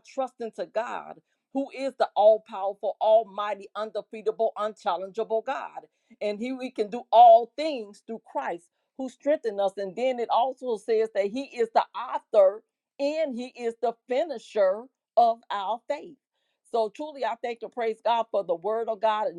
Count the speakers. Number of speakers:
1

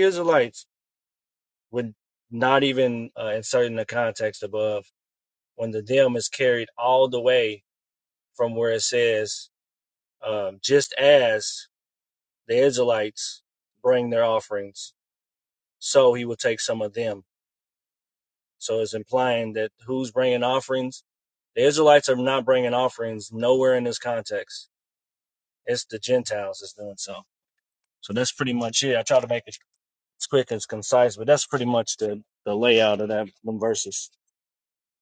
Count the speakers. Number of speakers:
1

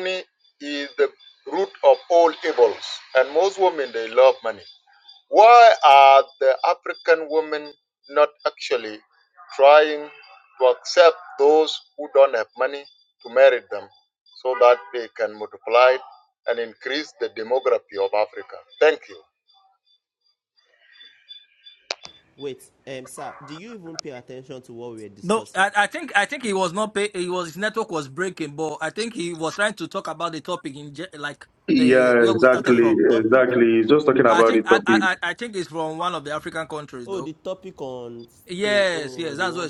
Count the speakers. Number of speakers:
4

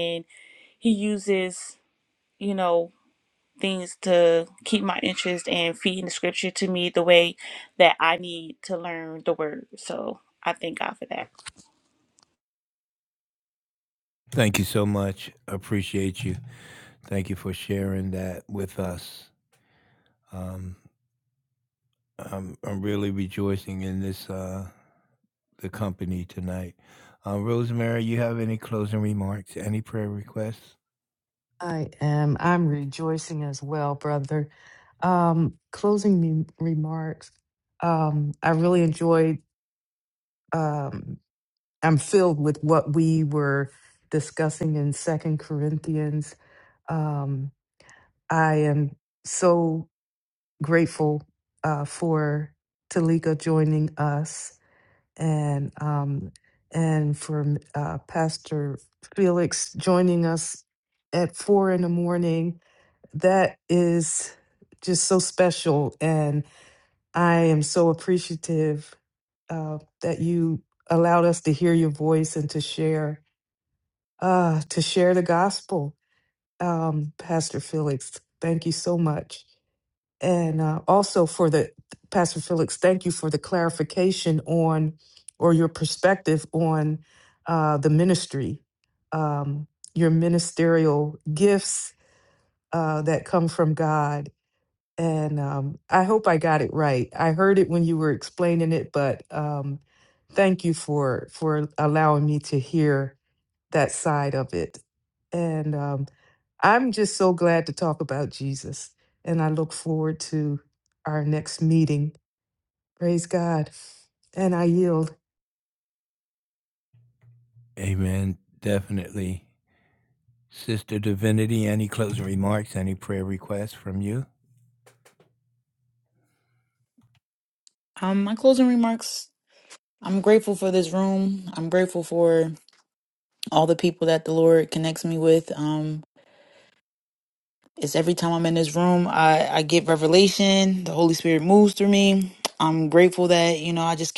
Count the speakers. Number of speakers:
4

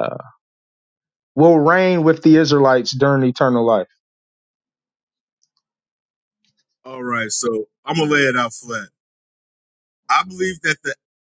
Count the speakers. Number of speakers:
2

